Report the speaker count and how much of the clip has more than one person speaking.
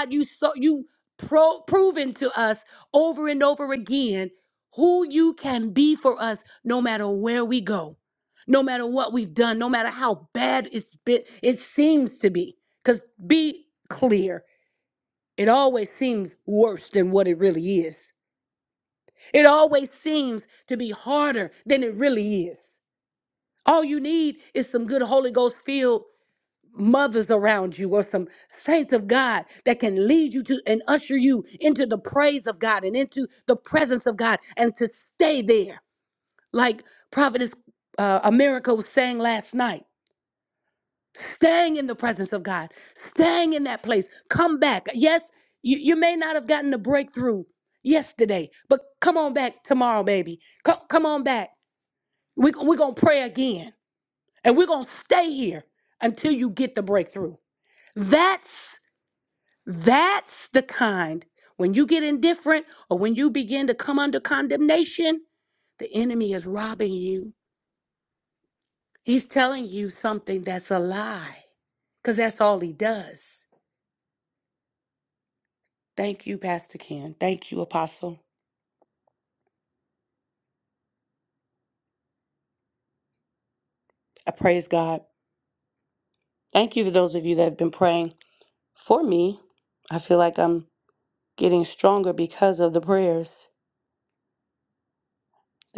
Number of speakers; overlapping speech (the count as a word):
one, no overlap